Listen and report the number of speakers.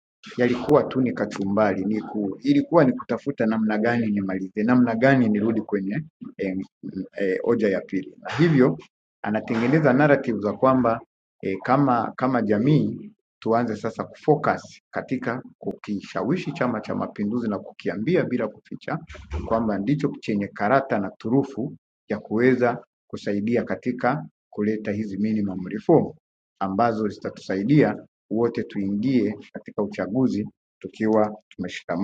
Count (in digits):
1